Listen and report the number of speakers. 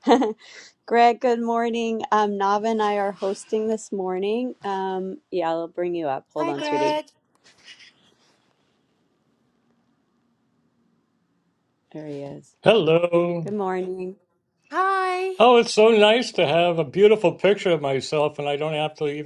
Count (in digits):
3